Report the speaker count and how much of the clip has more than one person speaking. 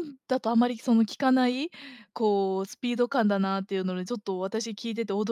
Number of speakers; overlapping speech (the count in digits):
1, no overlap